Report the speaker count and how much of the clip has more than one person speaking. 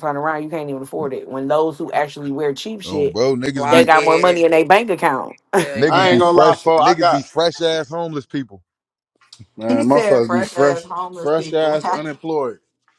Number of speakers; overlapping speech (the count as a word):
four, about 33%